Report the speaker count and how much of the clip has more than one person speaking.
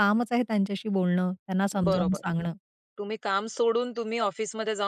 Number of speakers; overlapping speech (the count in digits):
2, about 11%